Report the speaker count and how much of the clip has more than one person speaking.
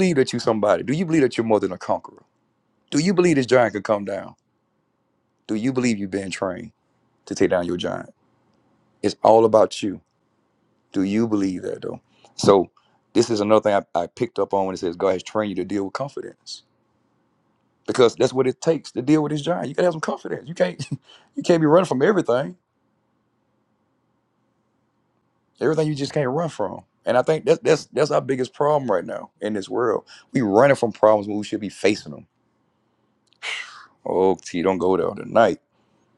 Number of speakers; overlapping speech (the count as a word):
one, no overlap